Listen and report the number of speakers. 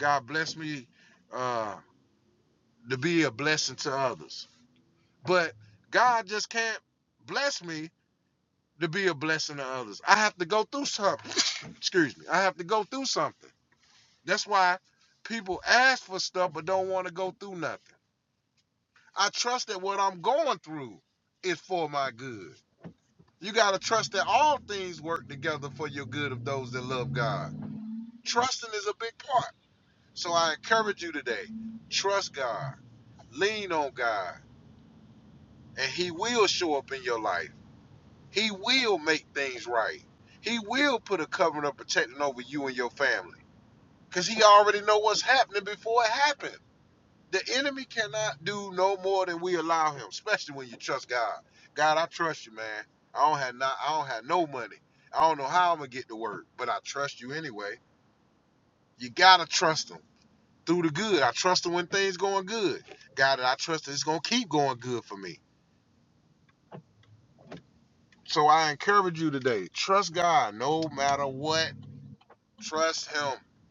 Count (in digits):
1